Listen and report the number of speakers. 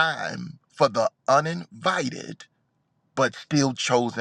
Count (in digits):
1